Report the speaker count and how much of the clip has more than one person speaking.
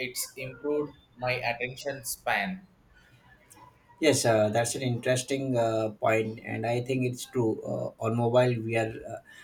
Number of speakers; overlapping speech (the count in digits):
2, no overlap